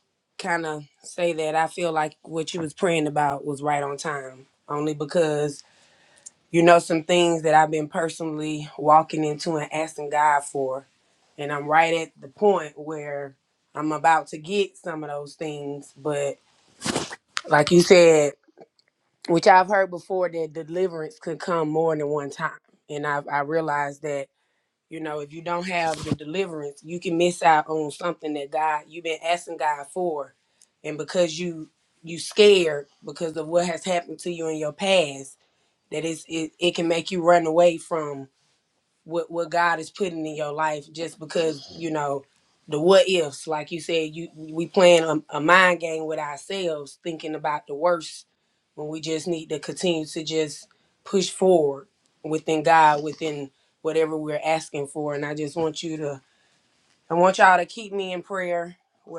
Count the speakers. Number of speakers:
one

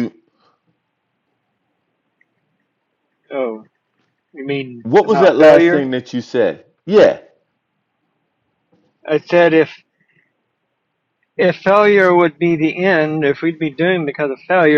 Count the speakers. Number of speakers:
two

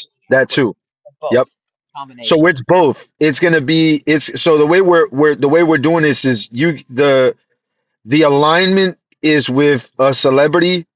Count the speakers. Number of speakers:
two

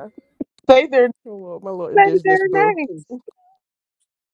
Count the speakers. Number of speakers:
two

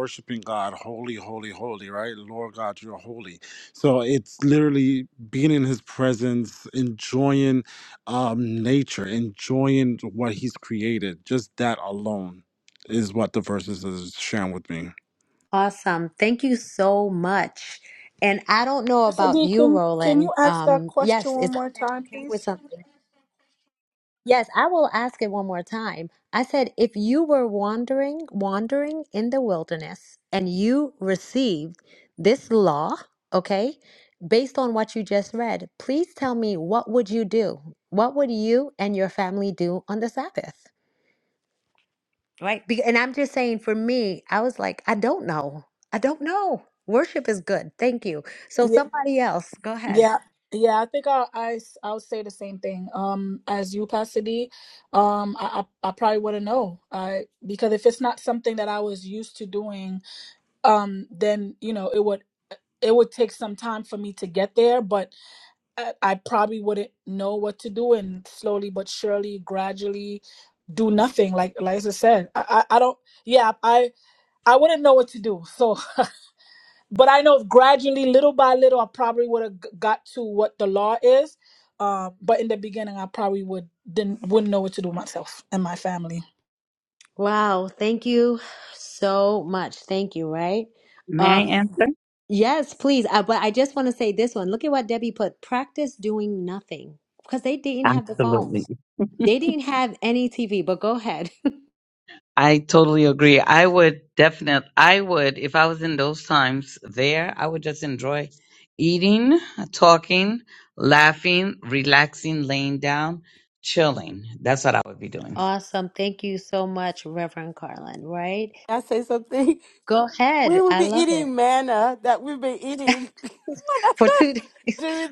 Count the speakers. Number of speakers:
five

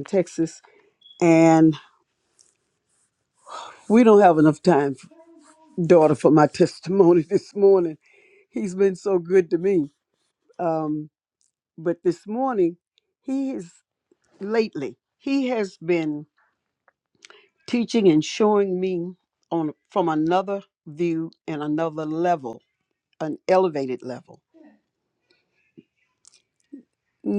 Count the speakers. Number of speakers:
one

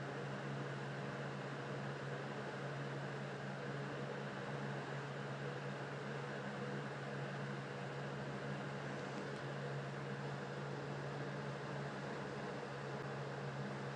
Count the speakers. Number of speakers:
zero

